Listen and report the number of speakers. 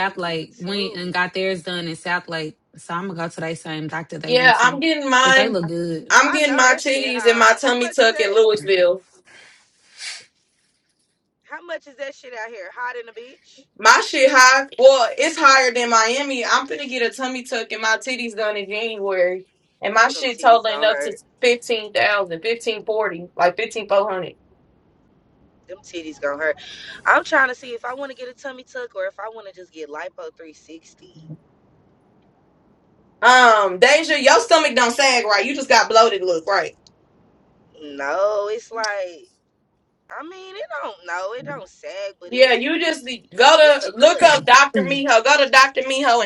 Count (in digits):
3